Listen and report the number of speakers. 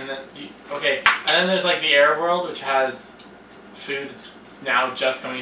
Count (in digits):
1